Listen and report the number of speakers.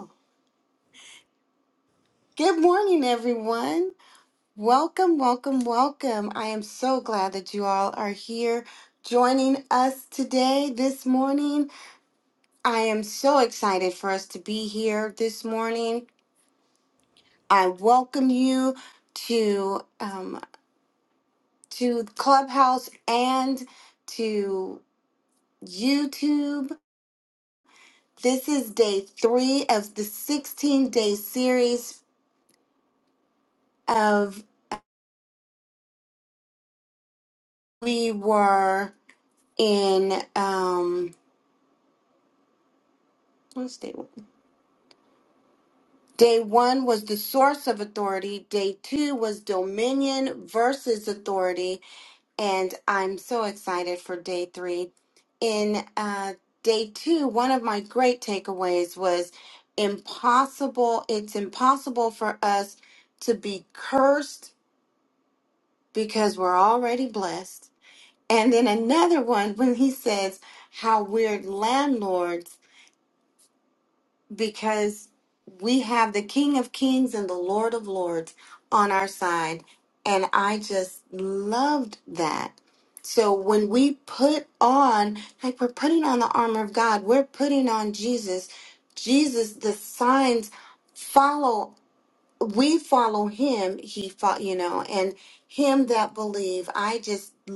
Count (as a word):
one